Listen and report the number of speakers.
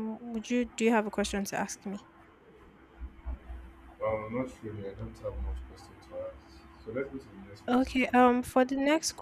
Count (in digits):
2